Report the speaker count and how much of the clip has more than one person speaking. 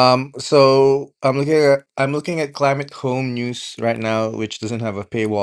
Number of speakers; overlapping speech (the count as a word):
one, no overlap